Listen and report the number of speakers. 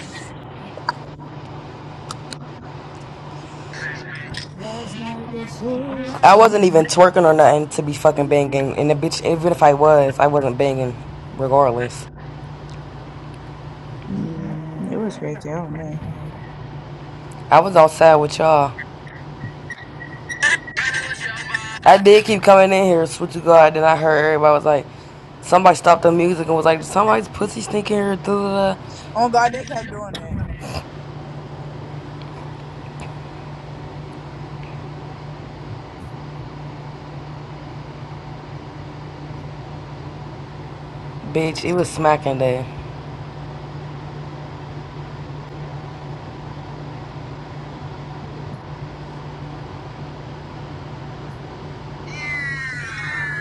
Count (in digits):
2